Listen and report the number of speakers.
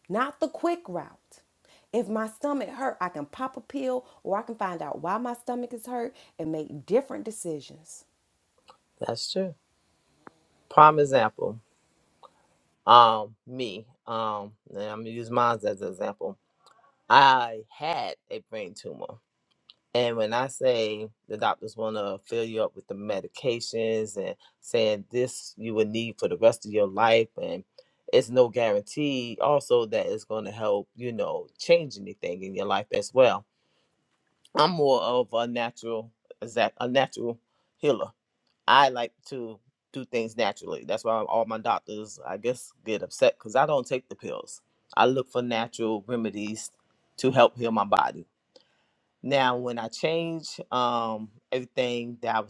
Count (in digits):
2